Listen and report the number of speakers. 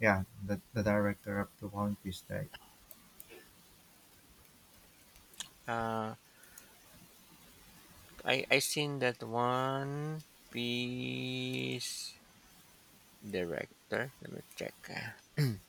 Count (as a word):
two